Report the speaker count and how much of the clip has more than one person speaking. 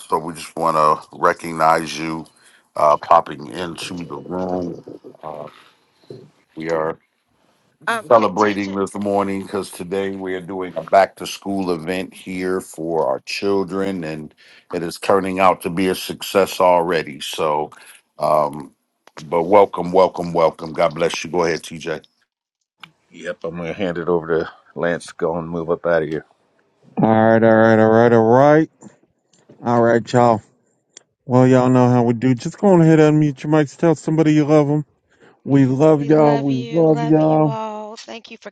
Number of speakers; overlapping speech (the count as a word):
four, about 6%